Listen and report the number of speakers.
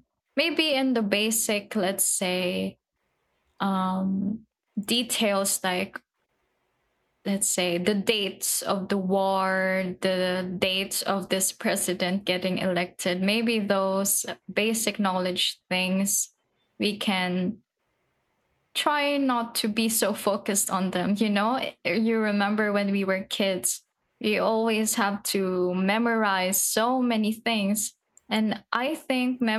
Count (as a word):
one